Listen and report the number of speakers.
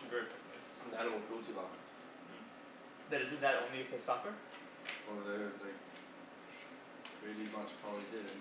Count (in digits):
2